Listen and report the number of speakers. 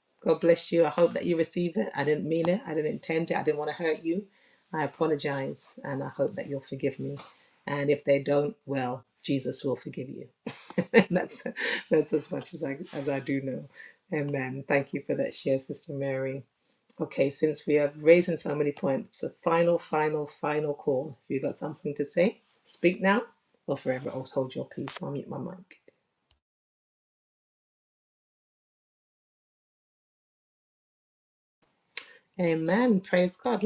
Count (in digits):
1